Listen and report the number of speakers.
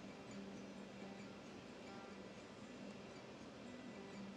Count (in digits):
0